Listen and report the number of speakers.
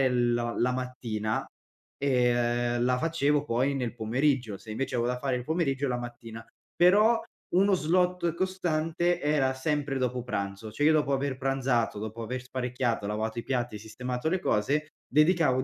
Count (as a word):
one